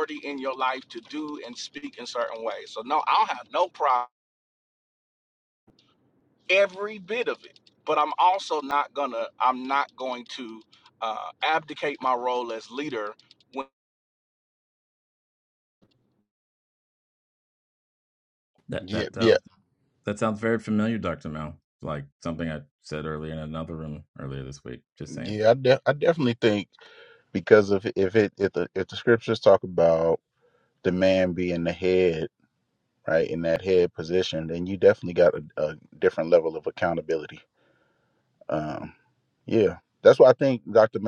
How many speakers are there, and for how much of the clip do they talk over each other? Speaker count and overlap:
three, about 2%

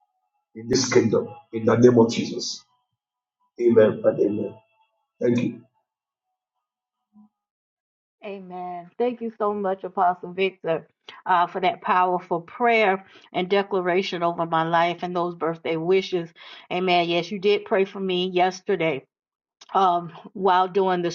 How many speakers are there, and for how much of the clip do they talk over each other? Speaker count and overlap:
two, no overlap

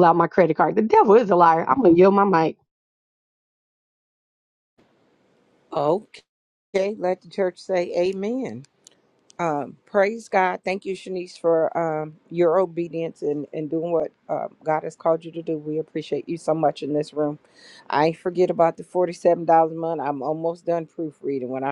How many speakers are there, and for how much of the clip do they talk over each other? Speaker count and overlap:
two, no overlap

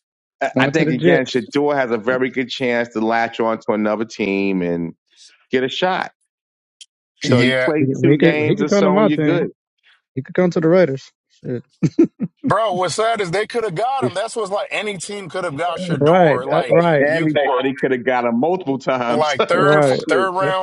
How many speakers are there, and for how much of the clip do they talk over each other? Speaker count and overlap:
three, about 28%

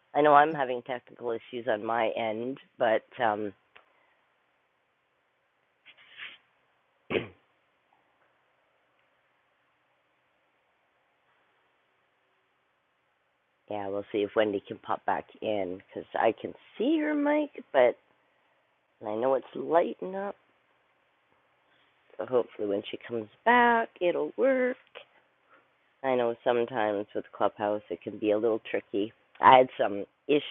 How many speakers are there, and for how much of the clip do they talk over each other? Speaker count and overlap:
one, no overlap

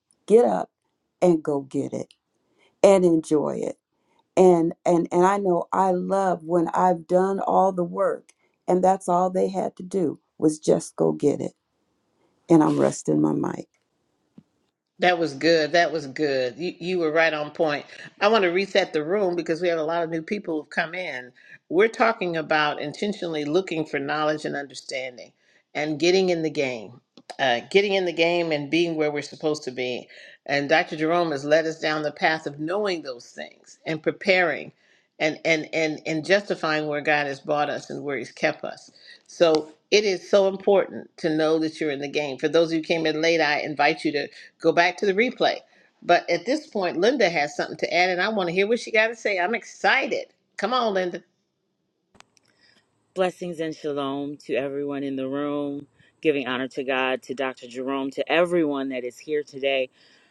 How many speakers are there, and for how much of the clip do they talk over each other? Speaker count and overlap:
three, no overlap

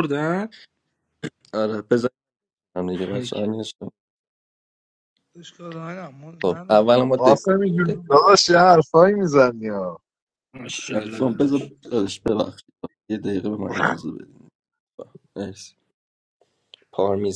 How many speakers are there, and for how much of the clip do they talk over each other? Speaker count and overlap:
four, about 9%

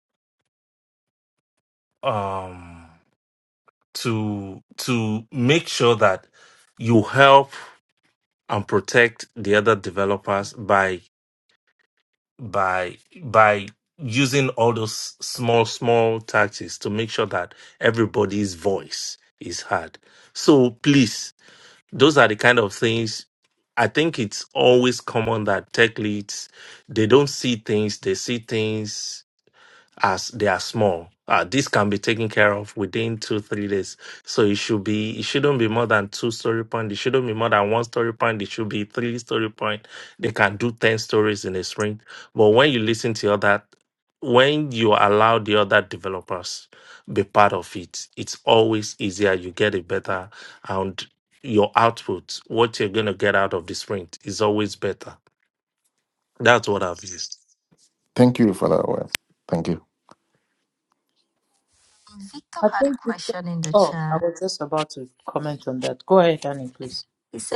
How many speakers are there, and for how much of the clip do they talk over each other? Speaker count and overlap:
four, about 2%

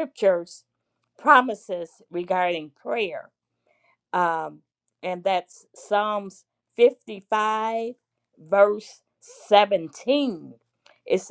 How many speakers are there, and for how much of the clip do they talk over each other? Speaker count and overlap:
one, no overlap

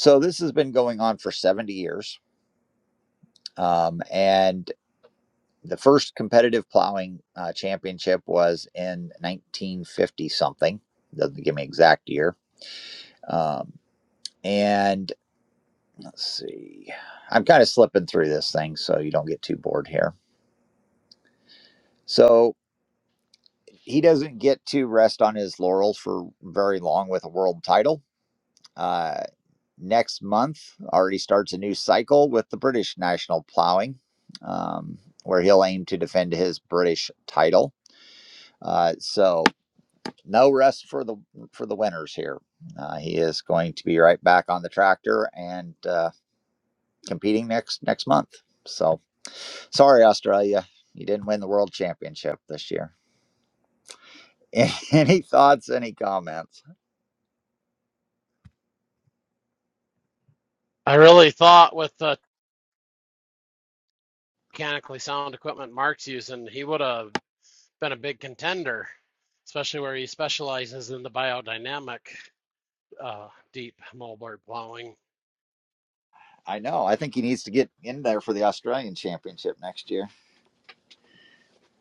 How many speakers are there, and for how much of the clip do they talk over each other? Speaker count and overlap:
two, no overlap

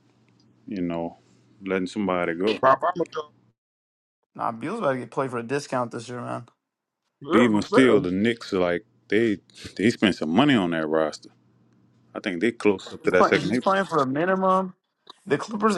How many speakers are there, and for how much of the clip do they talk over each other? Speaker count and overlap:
three, about 9%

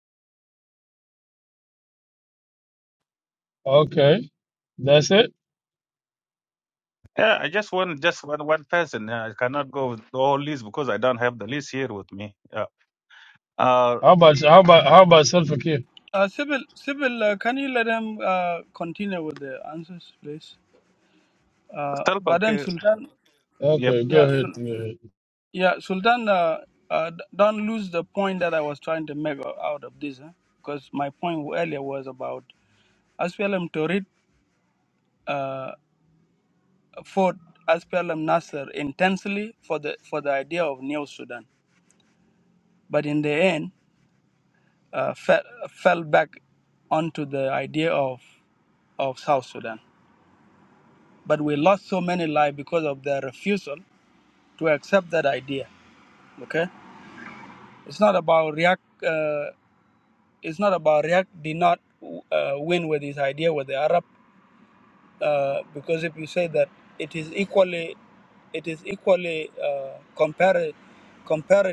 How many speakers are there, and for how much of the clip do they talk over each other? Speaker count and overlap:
three, about 2%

